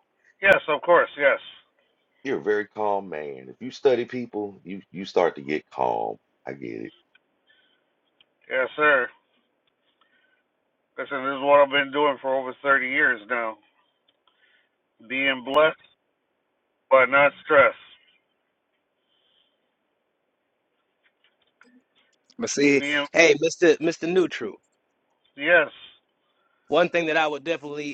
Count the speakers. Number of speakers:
three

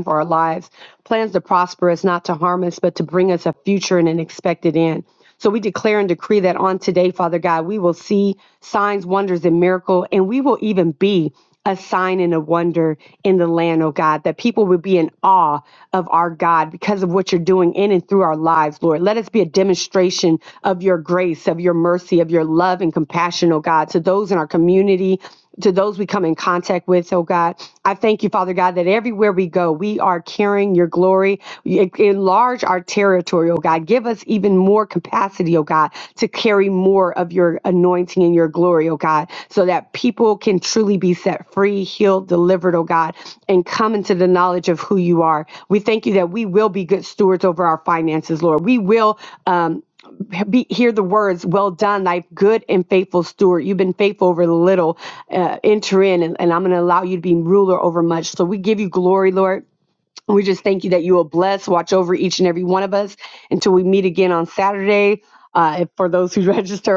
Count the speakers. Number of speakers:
one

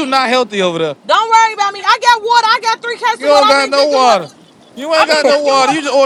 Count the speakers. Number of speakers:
two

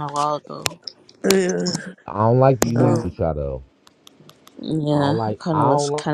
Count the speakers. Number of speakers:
three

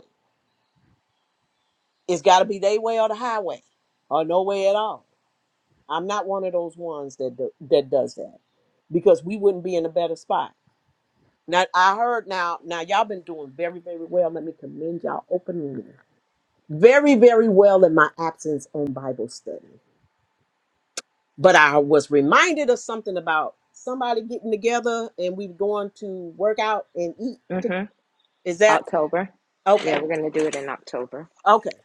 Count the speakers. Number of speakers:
two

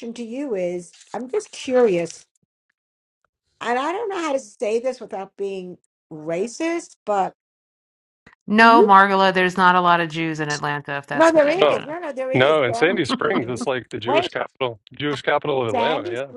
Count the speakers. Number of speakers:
three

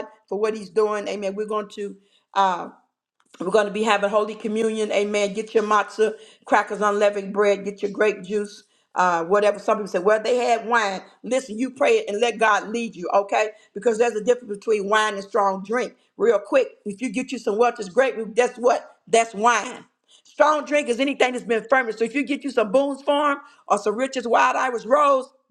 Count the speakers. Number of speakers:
one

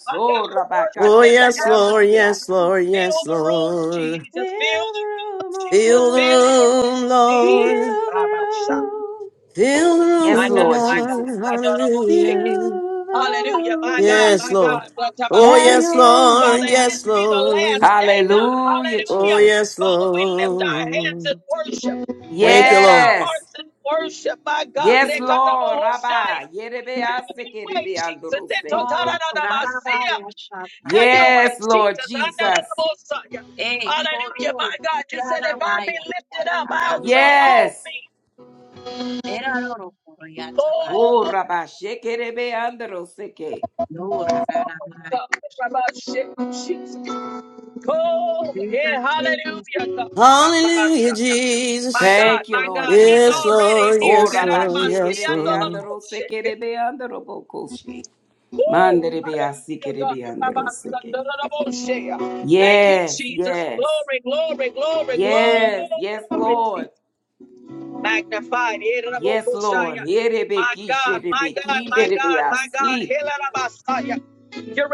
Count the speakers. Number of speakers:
four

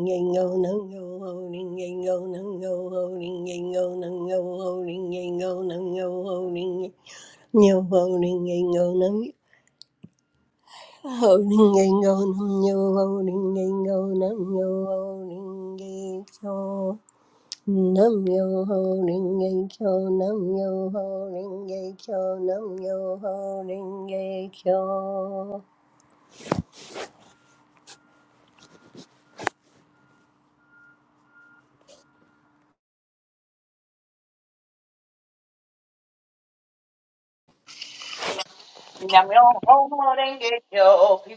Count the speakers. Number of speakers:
two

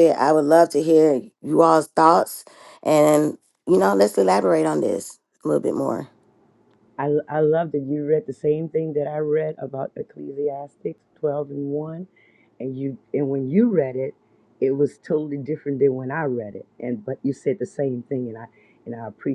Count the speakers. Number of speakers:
two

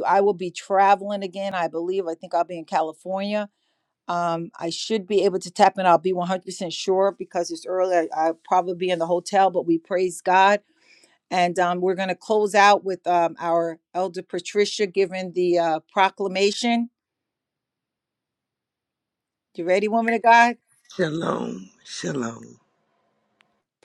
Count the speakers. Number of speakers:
two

